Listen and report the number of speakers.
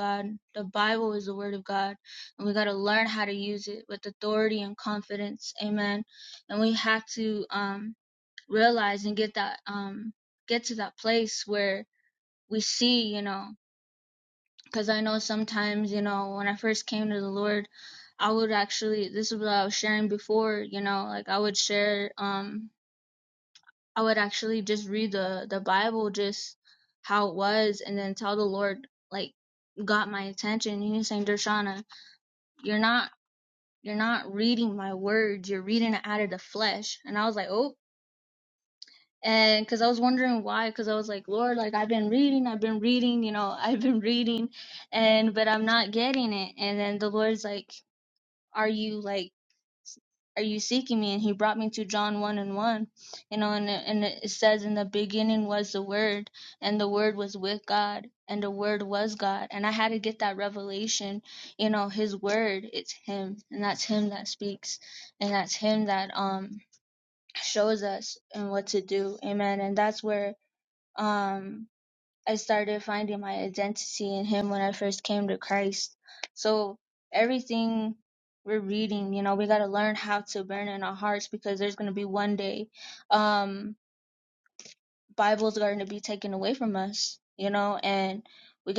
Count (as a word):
one